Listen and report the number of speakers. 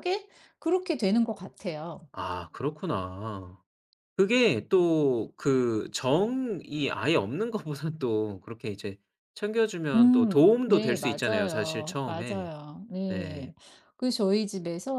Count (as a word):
two